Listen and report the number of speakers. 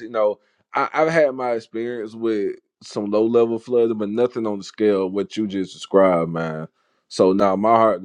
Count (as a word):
one